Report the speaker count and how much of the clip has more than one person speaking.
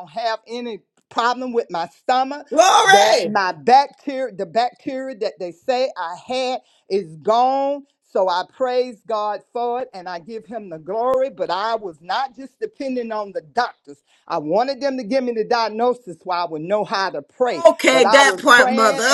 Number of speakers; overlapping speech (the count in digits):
2, about 10%